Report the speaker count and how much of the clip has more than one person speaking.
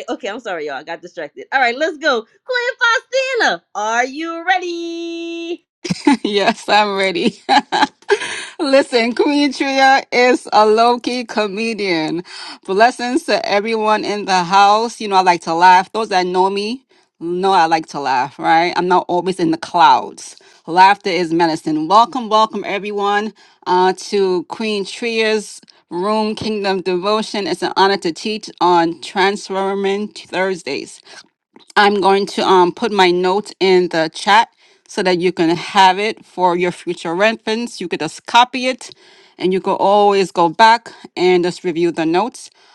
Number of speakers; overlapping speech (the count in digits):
2, no overlap